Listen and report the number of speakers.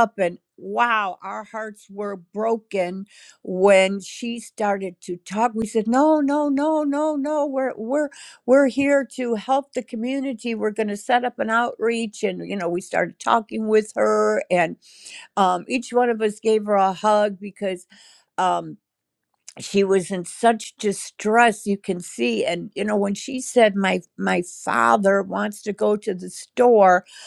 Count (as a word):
one